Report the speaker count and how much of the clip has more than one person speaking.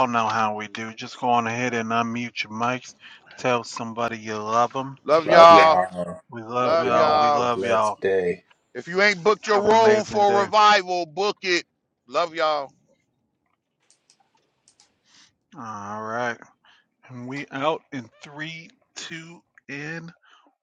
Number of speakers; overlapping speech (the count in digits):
3, about 15%